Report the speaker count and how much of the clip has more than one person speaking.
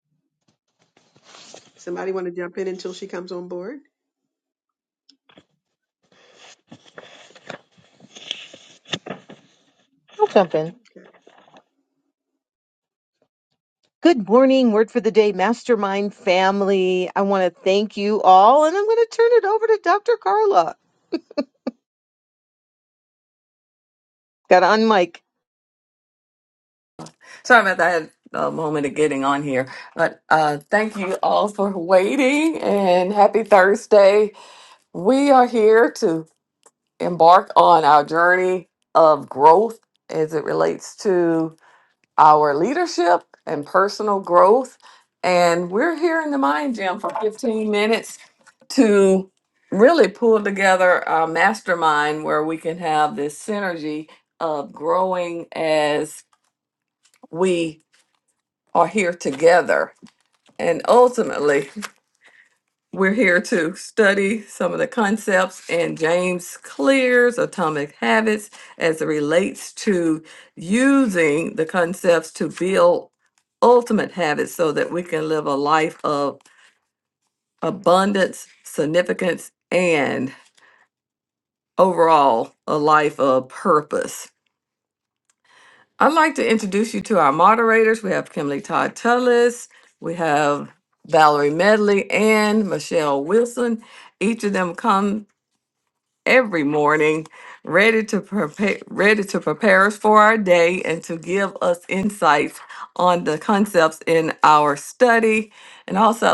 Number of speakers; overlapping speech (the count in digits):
3, no overlap